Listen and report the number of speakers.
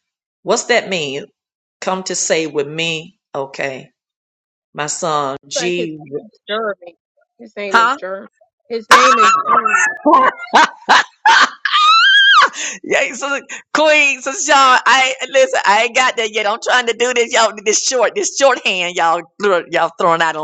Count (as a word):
two